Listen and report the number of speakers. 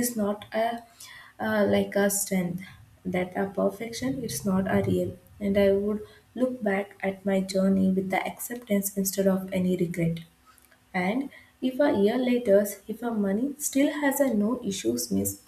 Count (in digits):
1